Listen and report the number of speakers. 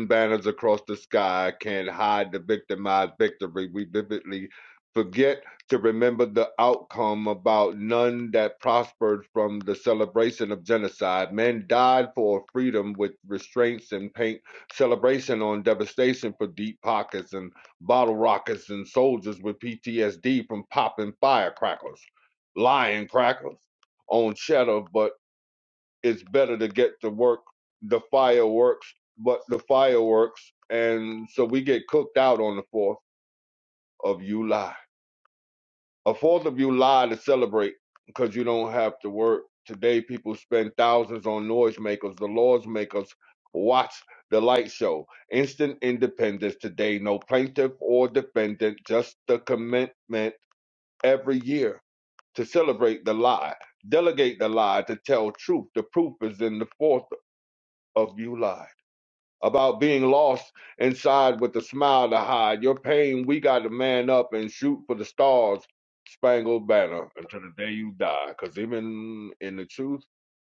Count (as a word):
one